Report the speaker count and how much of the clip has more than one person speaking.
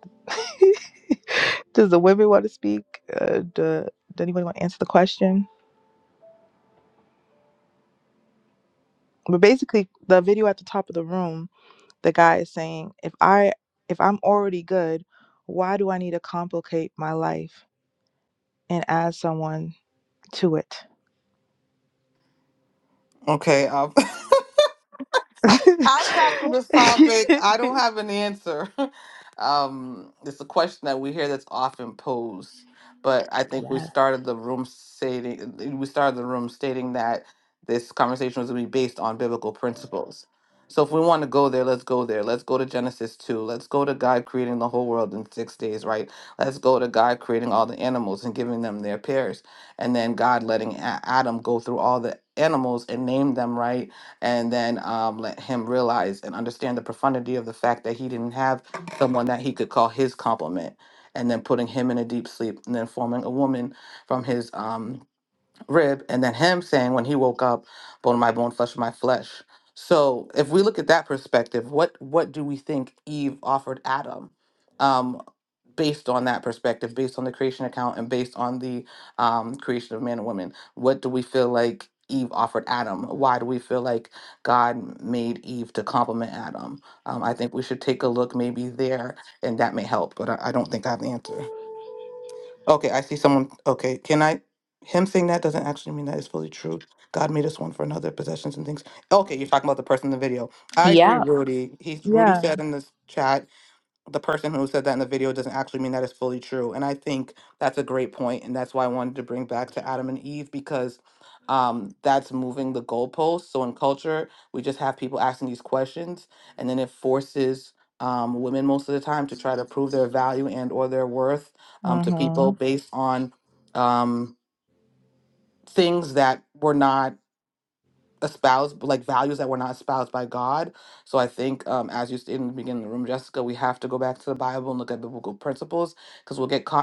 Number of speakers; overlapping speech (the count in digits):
2, about 1%